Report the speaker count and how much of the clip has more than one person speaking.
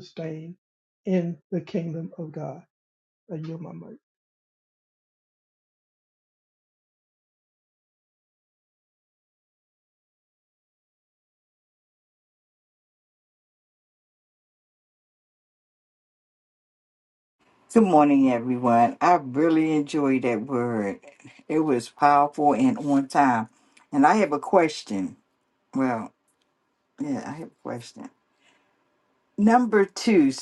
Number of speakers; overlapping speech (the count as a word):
two, no overlap